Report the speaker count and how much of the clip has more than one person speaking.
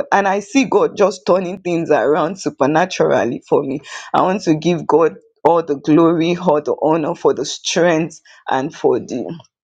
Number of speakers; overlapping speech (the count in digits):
1, no overlap